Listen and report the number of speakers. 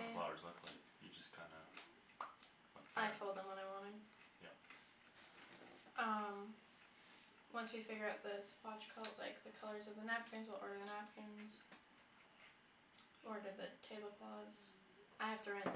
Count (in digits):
2